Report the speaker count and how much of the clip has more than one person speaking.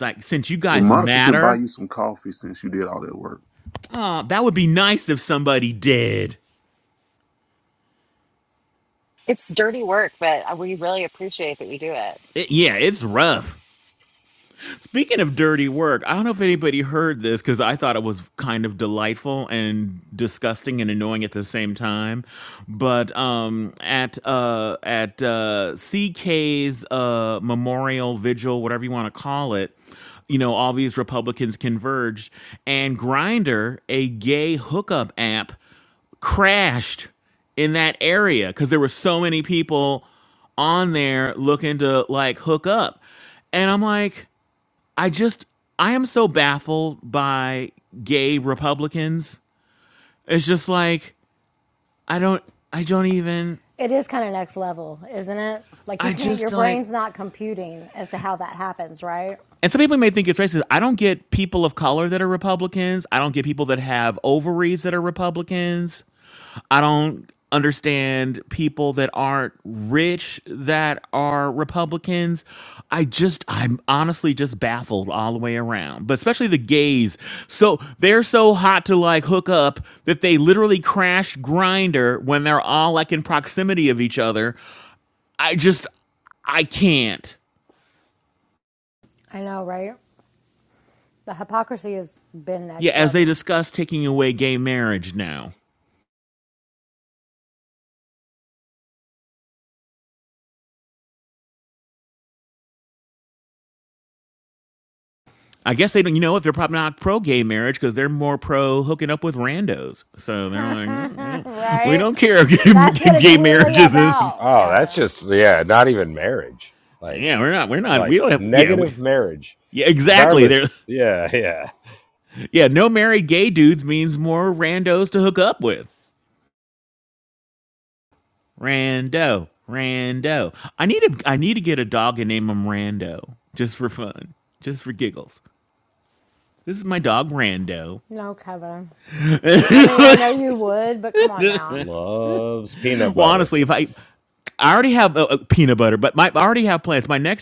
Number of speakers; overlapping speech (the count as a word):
five, about 5%